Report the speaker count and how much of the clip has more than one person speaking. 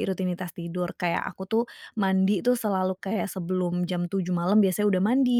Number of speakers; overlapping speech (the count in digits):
1, no overlap